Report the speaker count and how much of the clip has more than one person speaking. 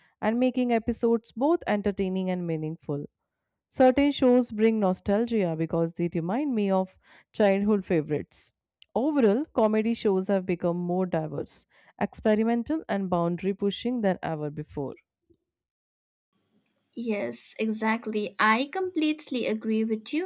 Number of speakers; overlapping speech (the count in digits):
2, no overlap